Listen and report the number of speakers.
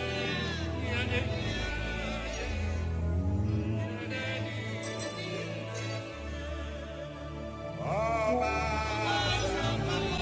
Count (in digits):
0